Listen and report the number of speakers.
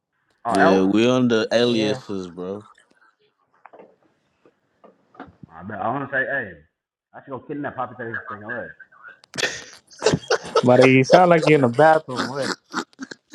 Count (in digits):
3